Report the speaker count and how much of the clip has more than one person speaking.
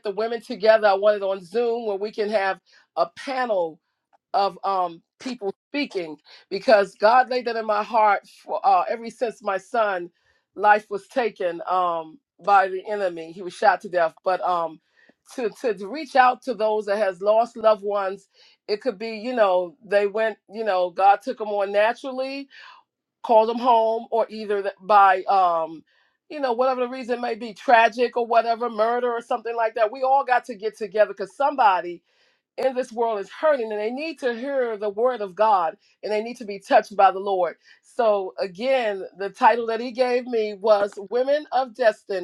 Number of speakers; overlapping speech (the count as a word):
one, no overlap